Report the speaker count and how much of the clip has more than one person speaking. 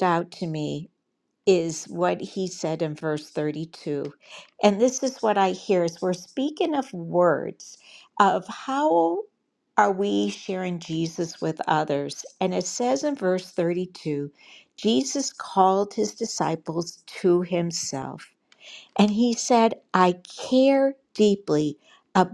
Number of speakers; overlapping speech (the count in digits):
1, no overlap